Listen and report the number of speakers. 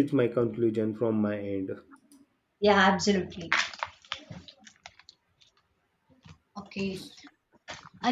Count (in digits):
2